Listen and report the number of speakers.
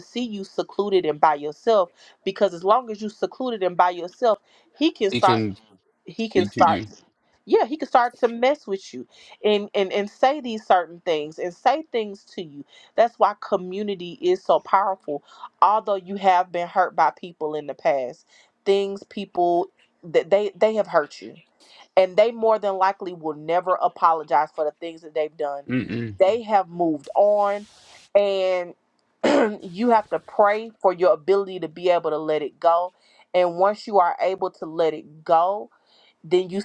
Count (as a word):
two